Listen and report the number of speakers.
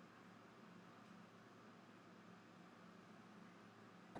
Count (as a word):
zero